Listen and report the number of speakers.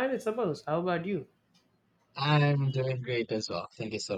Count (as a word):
two